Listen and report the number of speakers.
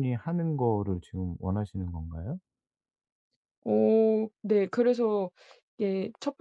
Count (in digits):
2